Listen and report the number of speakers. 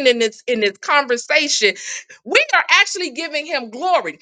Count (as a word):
one